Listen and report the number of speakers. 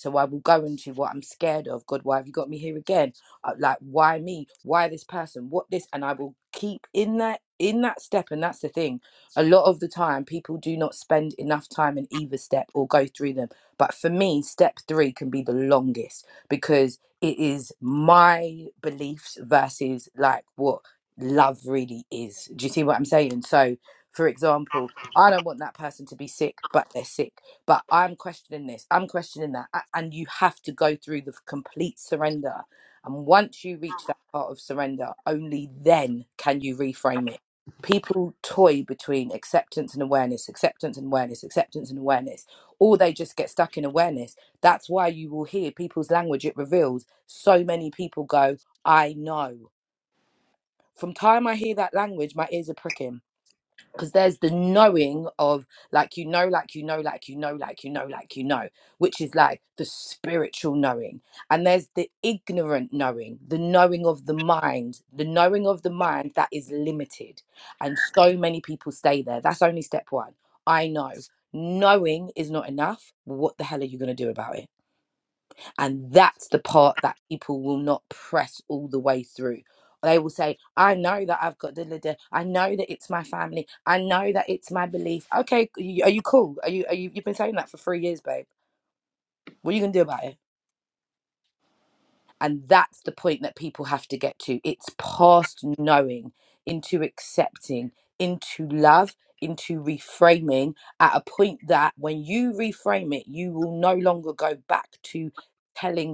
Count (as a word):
one